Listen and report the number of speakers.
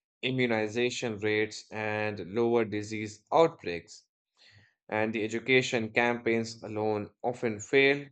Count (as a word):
one